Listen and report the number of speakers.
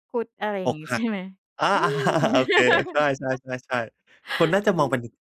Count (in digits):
2